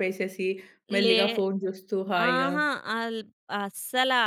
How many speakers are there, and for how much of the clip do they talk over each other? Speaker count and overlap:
two, about 13%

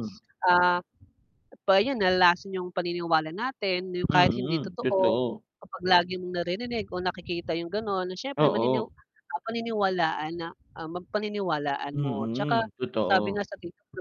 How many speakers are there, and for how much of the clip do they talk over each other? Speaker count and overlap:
two, about 18%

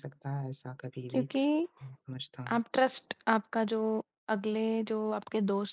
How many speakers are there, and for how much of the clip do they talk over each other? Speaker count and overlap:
two, about 6%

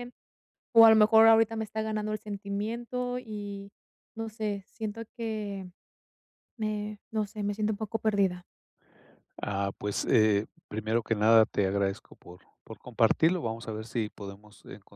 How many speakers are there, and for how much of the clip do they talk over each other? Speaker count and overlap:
two, no overlap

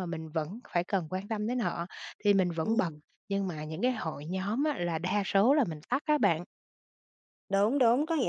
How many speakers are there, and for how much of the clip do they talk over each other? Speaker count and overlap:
two, about 3%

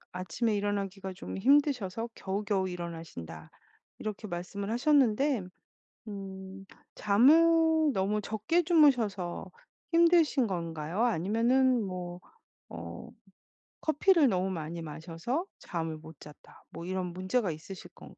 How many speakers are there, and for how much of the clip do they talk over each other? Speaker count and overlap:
one, no overlap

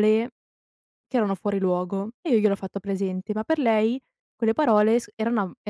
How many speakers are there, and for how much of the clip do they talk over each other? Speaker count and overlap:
one, no overlap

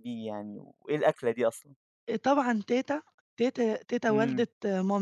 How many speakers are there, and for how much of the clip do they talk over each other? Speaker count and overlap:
two, about 7%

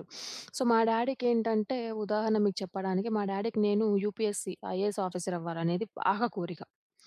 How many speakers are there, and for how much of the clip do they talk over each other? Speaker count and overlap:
one, no overlap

